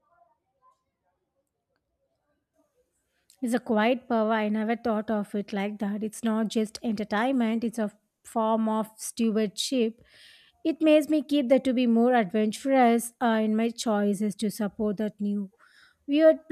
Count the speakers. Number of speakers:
1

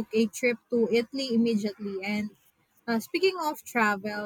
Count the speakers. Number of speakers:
1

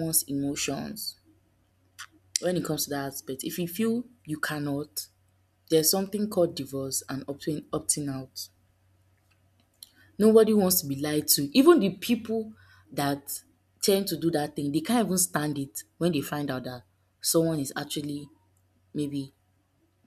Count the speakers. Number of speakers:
1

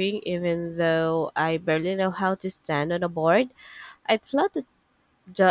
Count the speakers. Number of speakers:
1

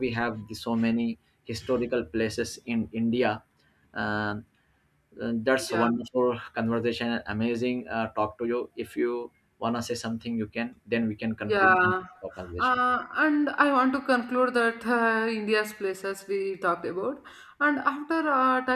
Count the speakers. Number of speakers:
2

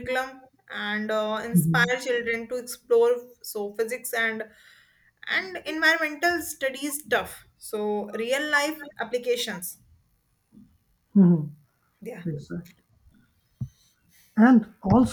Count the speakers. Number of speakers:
2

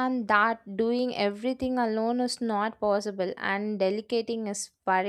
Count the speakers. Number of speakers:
1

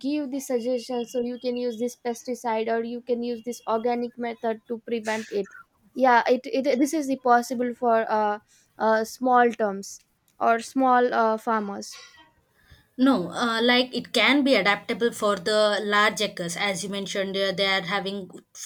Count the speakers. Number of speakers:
2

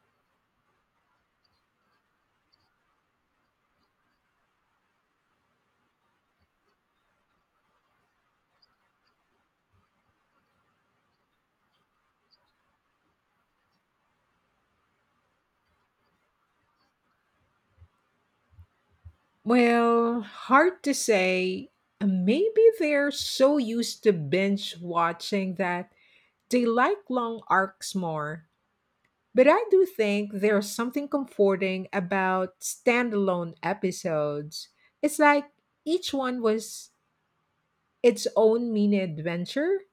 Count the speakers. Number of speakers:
1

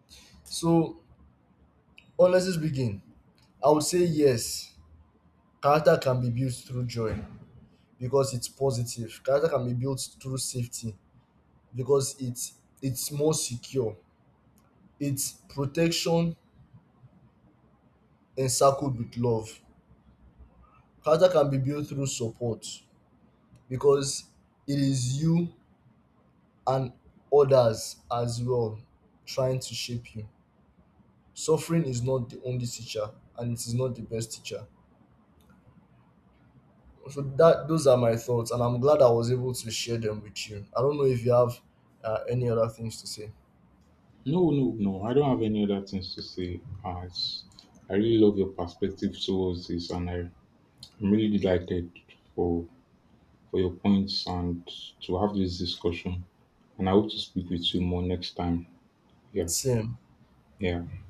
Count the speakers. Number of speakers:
2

